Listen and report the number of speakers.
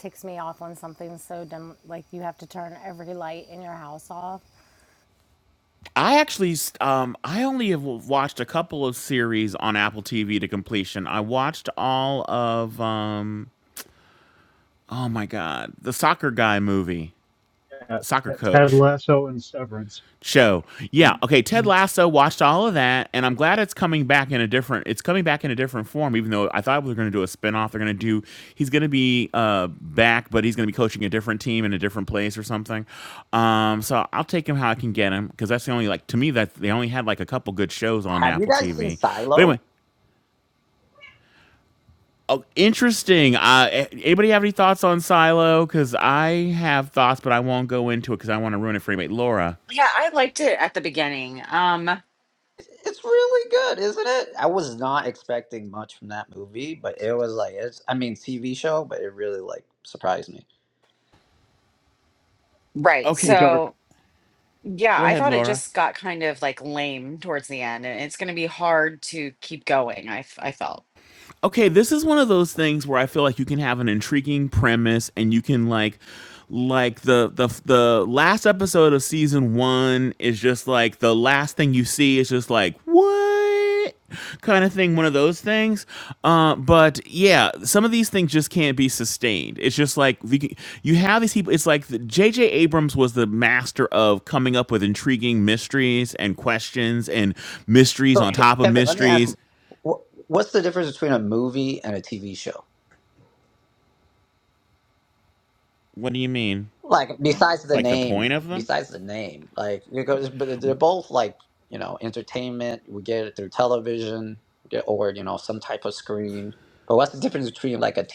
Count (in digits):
5